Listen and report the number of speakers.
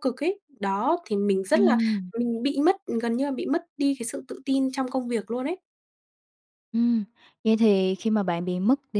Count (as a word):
two